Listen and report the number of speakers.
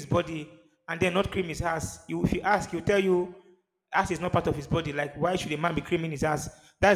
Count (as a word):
one